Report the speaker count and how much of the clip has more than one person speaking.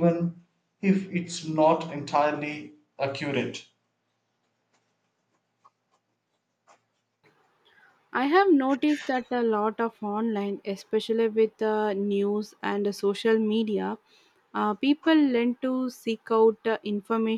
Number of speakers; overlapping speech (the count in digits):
2, no overlap